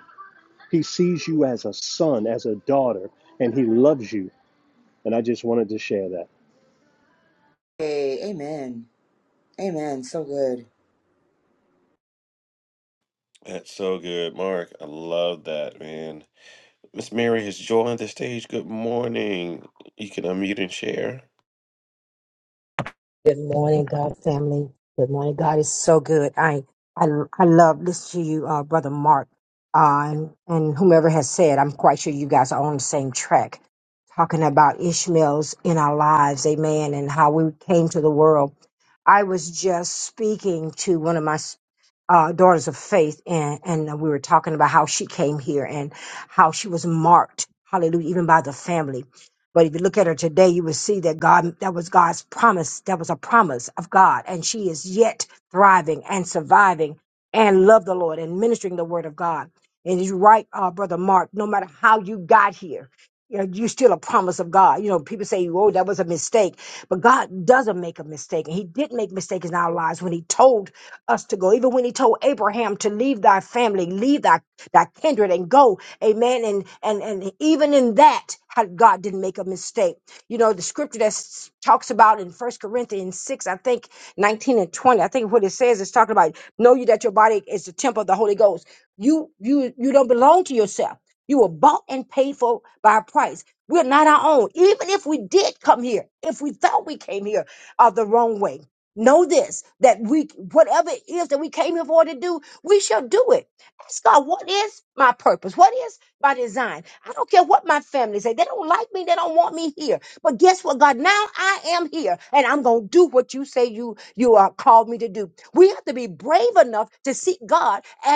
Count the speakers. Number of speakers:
four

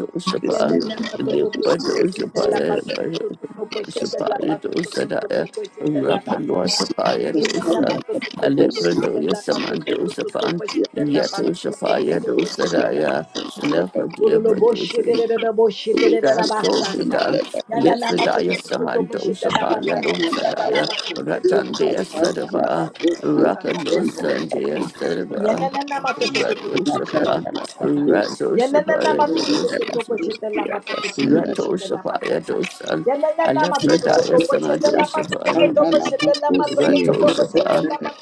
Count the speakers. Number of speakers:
three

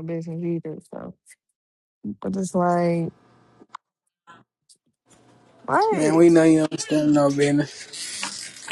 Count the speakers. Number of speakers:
two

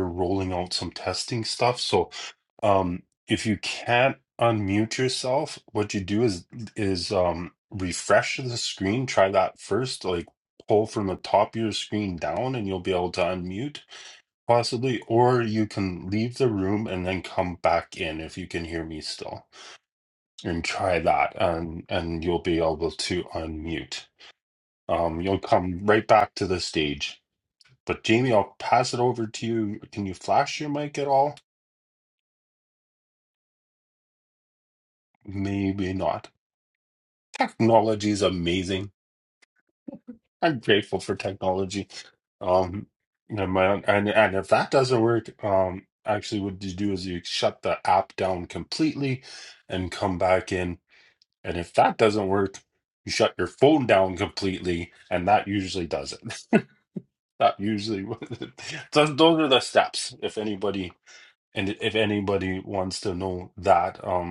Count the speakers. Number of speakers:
one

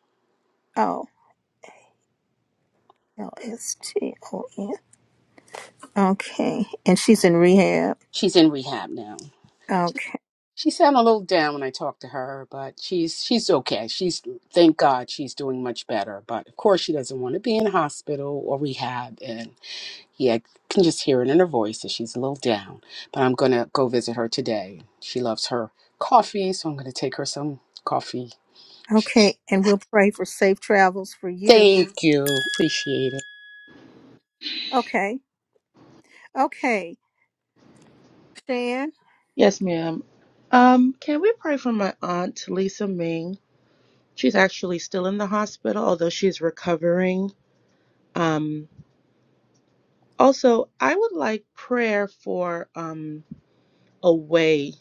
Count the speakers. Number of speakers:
three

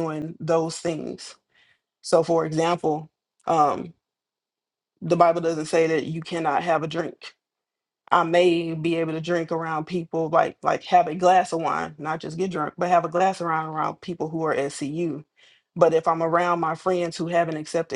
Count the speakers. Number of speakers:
one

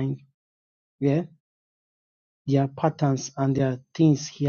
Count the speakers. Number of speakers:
one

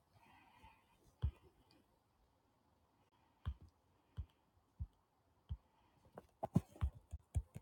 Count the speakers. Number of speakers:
zero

